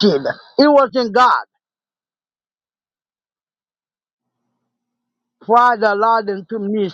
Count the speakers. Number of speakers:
one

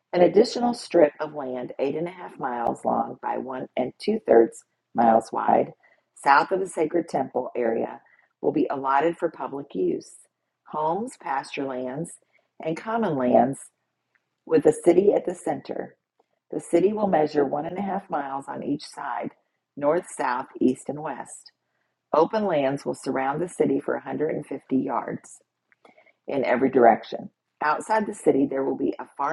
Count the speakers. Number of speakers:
one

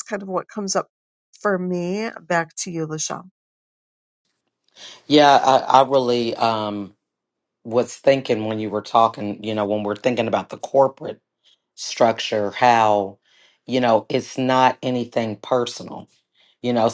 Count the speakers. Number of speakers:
two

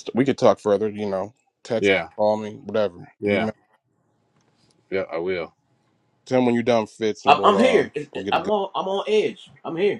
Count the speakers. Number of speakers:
three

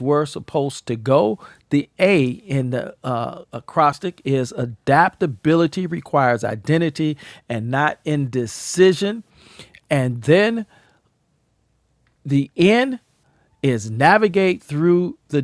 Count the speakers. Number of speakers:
one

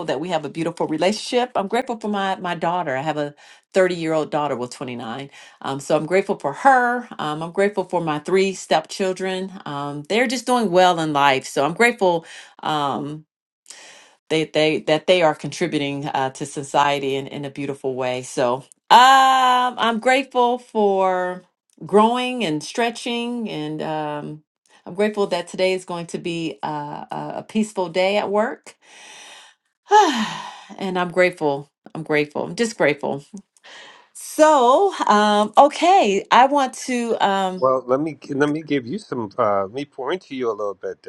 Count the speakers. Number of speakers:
two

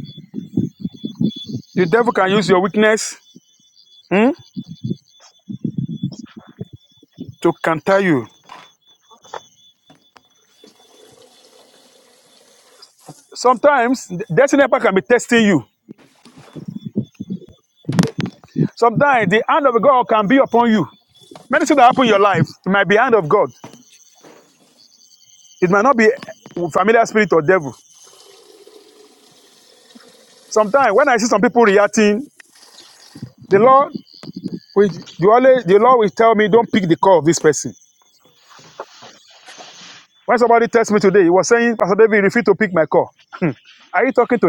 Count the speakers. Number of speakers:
one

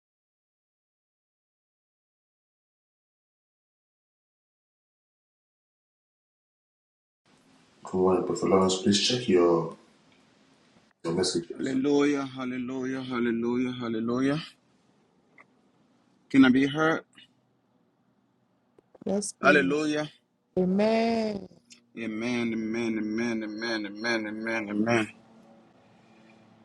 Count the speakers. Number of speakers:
three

